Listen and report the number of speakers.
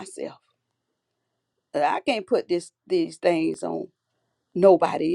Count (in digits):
1